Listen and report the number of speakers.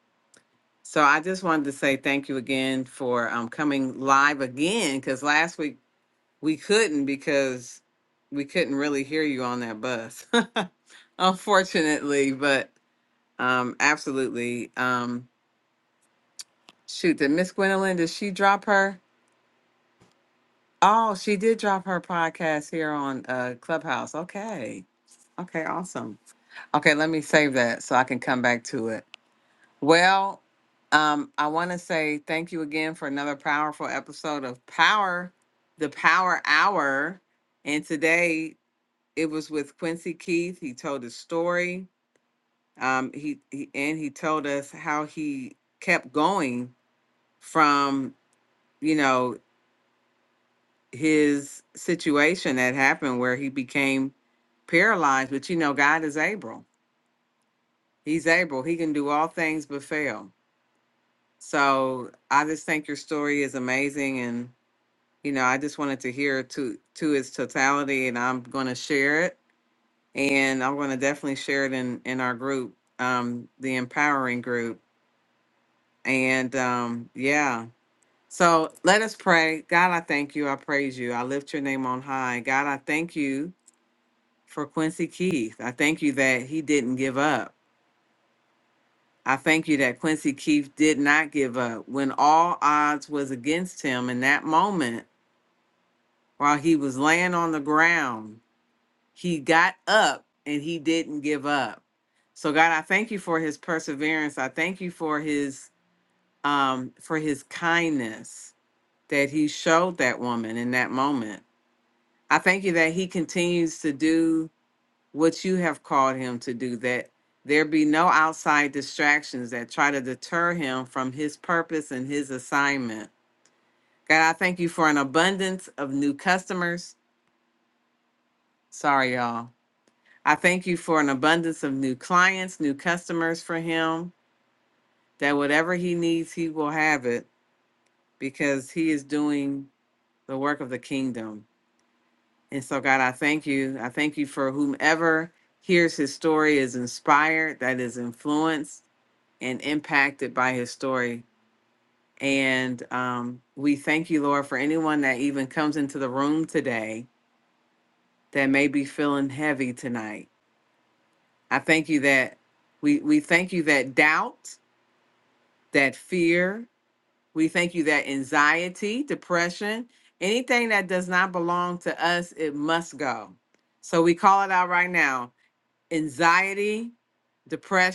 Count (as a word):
one